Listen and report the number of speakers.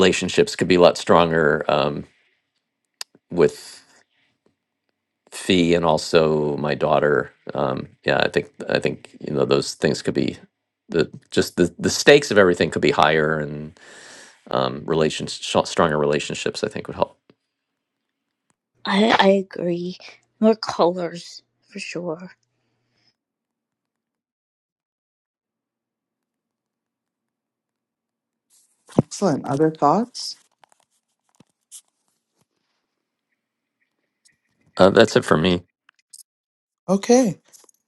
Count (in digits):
3